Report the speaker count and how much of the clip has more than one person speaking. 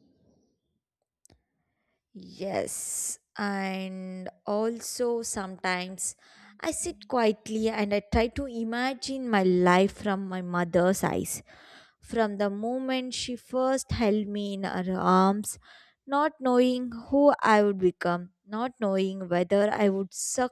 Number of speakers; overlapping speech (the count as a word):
one, no overlap